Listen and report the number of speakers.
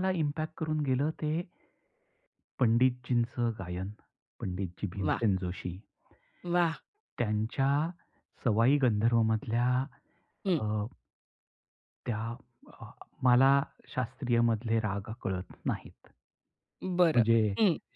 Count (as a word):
two